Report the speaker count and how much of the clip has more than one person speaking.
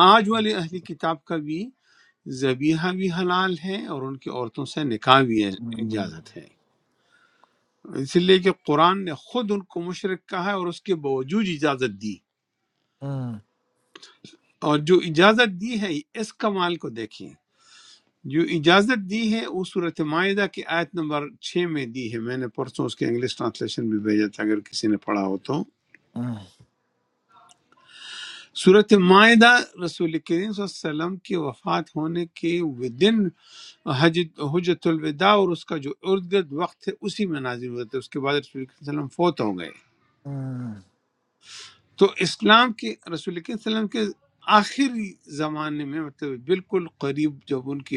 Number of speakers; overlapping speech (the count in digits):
2, about 1%